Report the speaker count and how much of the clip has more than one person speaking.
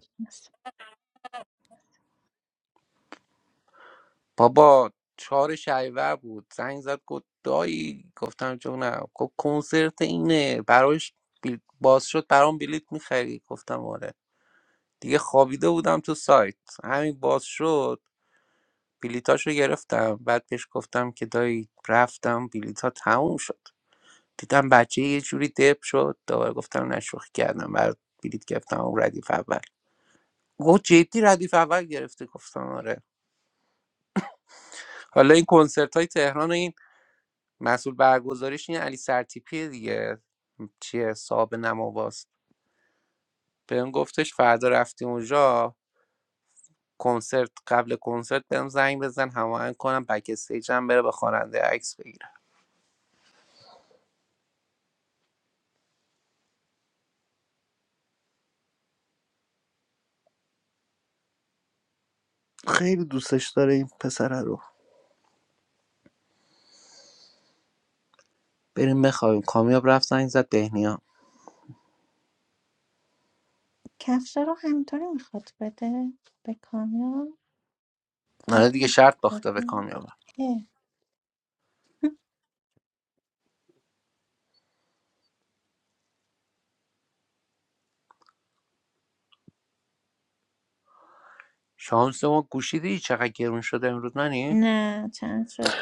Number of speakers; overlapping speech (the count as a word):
two, about 1%